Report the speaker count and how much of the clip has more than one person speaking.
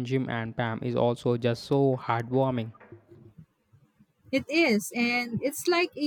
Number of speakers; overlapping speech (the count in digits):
2, no overlap